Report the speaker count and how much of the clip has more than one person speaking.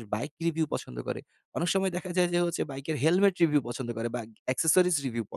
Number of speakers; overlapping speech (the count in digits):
1, no overlap